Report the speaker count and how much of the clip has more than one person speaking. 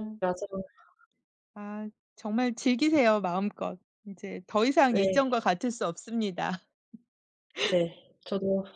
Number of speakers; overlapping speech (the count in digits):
2, about 4%